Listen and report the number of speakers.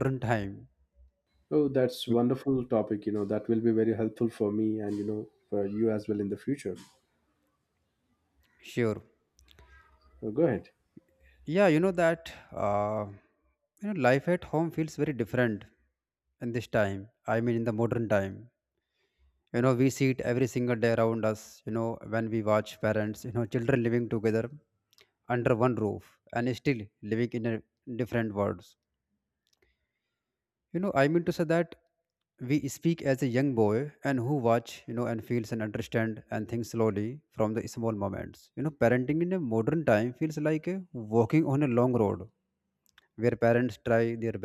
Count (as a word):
two